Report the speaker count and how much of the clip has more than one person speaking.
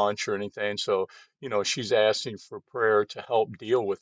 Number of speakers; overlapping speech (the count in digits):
1, no overlap